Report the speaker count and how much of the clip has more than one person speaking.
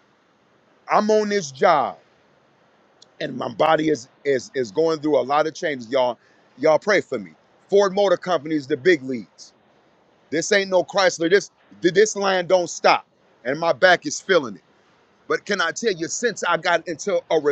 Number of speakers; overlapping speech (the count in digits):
1, no overlap